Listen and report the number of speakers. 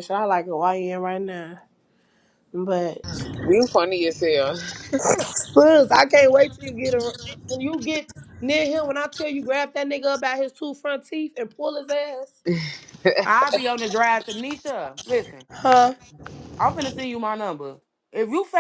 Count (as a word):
three